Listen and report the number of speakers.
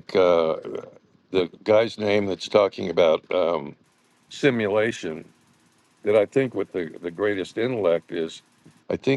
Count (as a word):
one